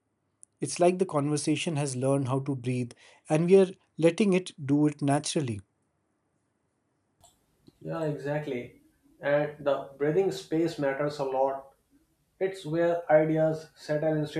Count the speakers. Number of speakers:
two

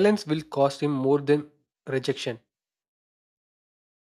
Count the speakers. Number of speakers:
one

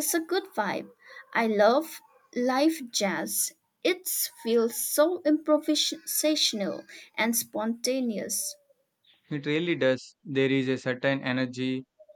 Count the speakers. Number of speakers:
two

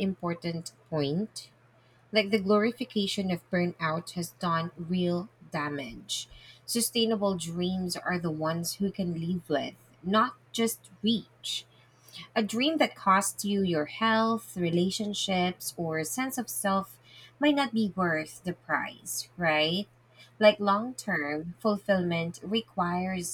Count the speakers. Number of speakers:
one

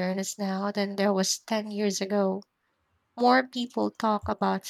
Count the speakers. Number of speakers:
one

